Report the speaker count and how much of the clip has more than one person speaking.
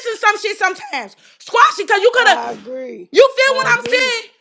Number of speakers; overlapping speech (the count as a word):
two, about 21%